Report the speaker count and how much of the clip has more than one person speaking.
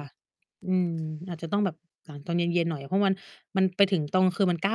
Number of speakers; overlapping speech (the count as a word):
one, no overlap